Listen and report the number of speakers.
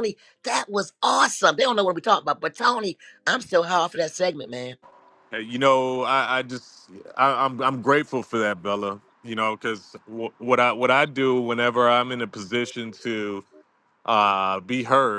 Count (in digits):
2